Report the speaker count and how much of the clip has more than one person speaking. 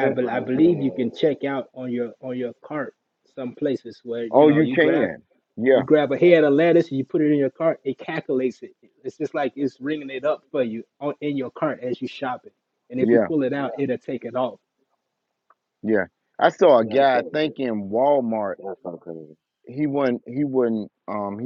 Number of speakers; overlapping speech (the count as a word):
three, about 14%